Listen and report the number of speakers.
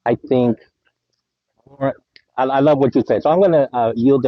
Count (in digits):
1